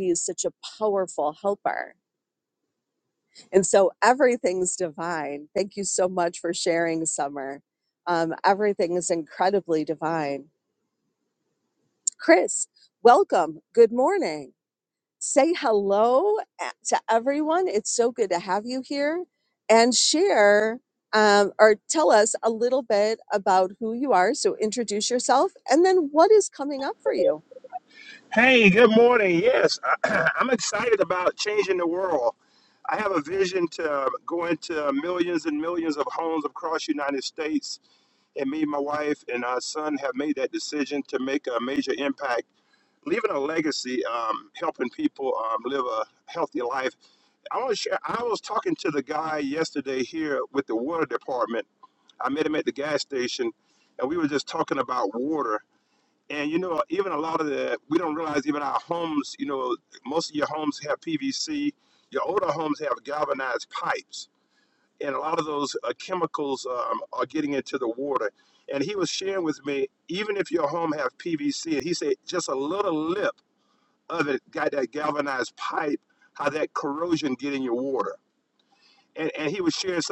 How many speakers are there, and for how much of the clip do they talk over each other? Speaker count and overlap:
2, no overlap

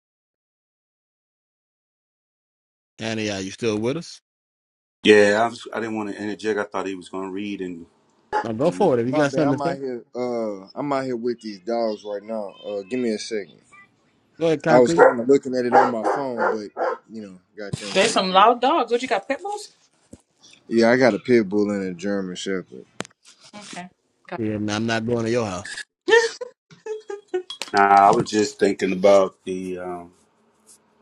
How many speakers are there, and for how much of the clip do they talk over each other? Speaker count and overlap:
4, about 6%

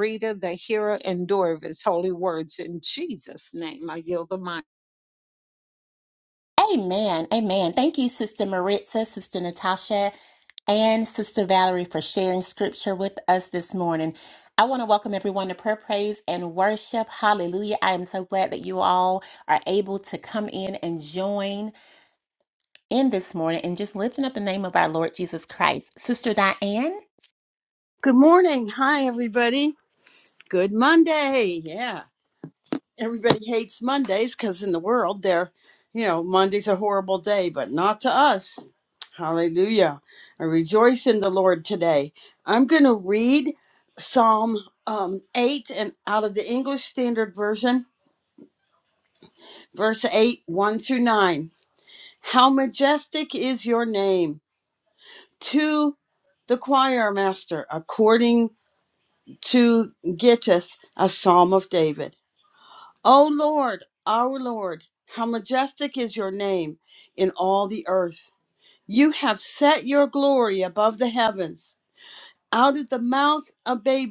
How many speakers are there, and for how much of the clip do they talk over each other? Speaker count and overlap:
3, no overlap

